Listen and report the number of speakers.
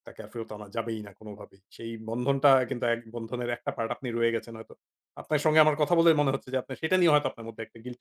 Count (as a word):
one